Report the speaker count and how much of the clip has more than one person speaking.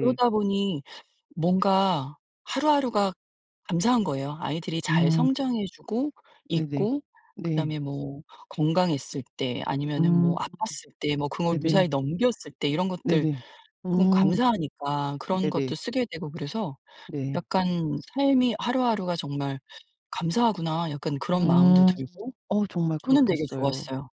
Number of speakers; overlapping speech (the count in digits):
2, about 18%